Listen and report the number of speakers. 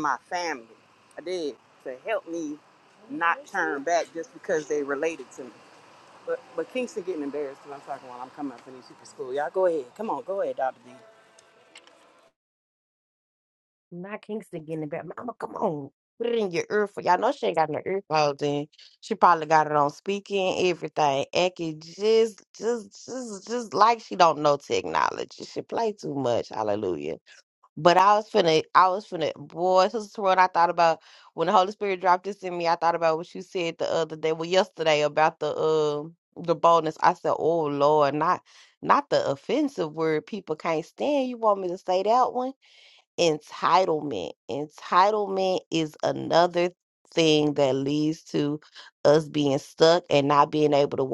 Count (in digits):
2